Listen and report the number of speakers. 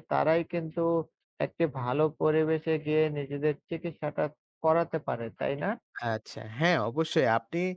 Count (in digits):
2